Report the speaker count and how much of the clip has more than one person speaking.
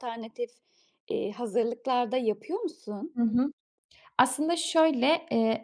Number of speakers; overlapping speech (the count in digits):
2, no overlap